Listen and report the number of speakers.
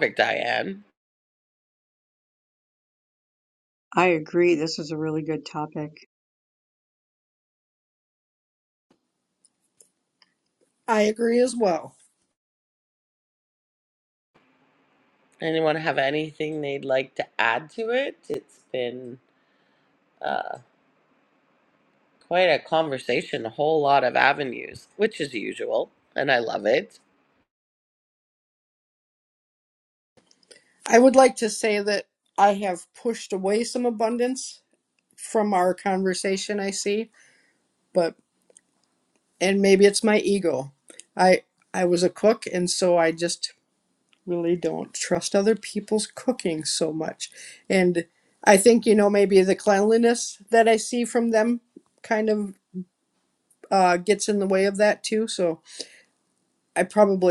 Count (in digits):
3